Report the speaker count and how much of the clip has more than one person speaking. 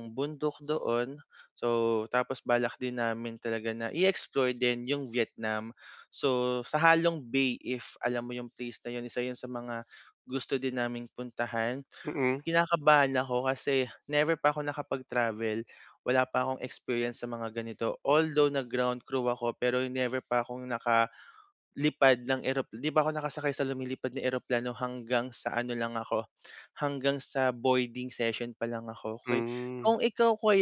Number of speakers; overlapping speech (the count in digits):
2, about 1%